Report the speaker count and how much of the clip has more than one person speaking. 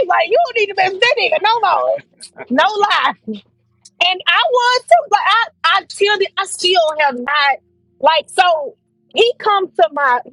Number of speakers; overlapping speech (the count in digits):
1, no overlap